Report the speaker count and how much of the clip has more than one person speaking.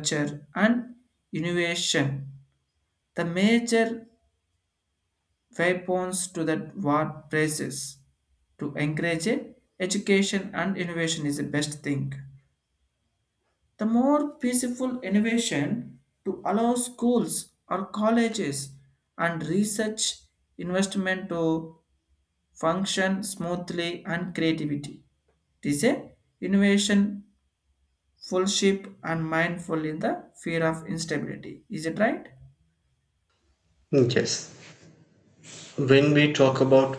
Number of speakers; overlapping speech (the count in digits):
2, no overlap